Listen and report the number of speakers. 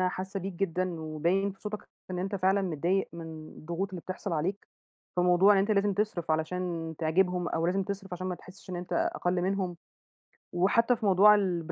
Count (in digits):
1